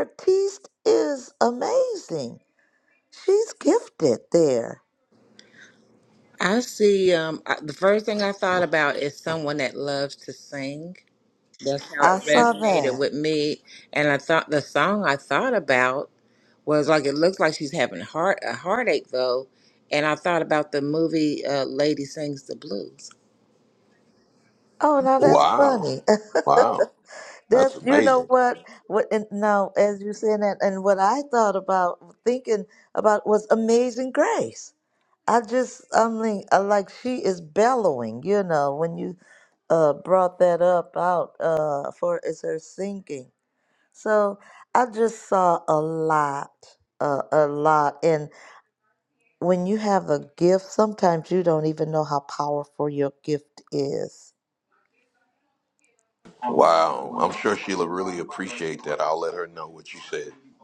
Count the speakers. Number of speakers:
three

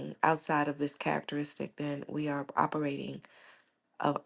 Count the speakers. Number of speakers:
one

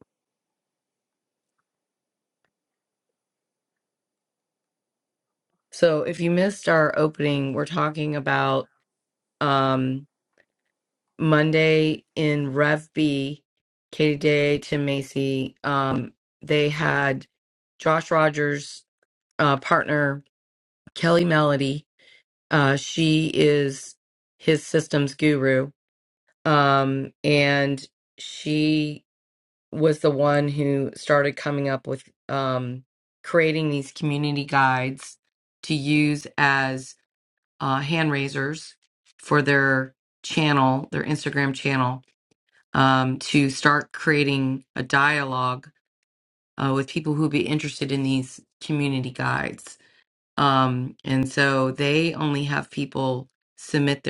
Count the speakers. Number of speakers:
one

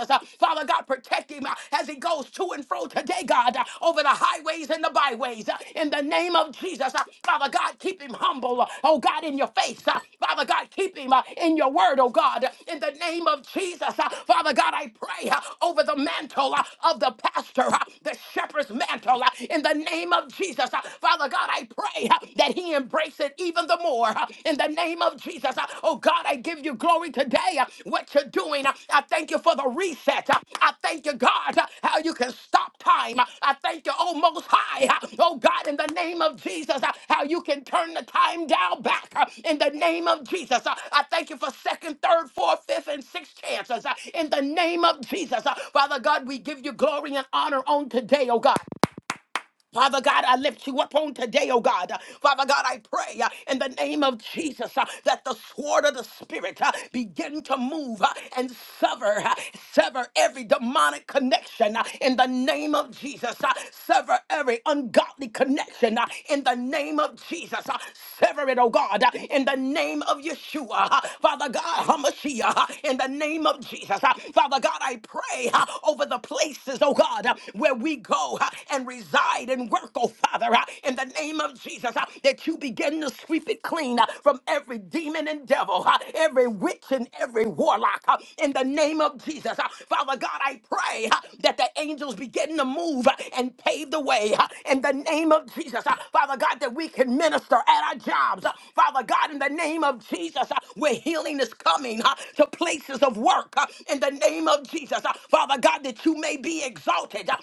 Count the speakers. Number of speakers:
one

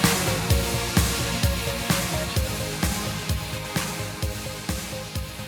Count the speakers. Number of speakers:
zero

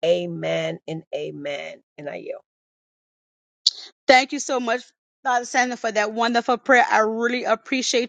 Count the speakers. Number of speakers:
two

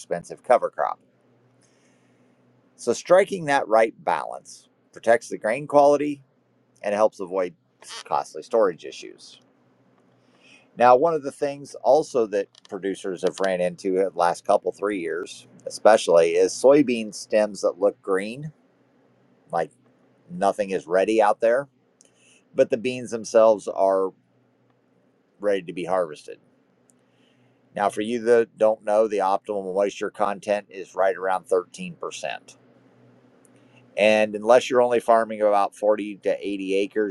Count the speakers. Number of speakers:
one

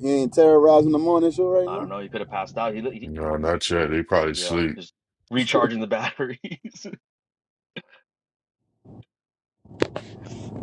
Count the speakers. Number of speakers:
three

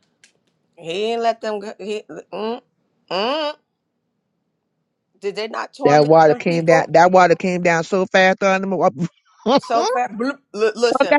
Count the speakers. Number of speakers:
two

